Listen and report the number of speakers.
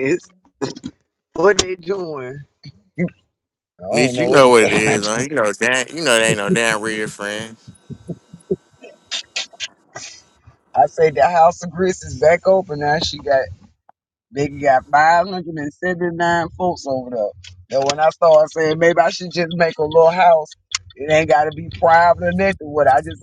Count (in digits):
2